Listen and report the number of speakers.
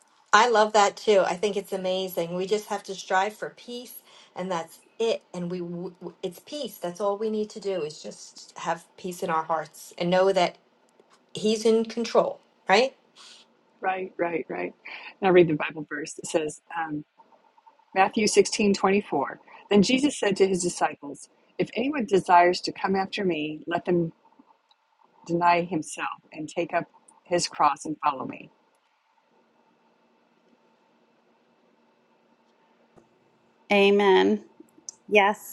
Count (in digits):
3